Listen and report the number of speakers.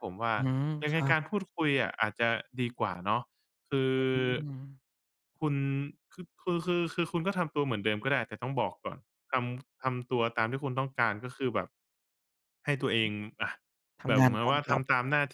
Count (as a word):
two